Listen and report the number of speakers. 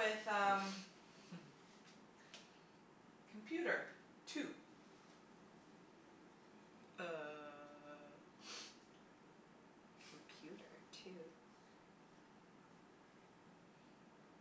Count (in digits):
2